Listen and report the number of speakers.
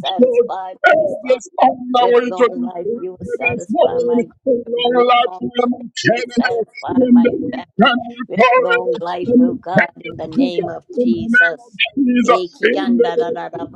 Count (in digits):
2